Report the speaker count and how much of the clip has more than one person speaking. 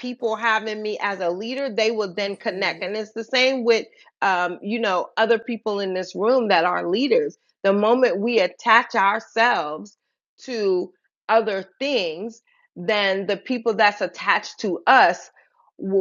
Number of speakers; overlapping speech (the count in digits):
1, no overlap